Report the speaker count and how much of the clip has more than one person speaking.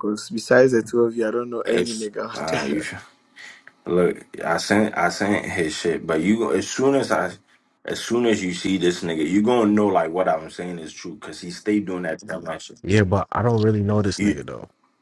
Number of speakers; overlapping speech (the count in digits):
3, about 9%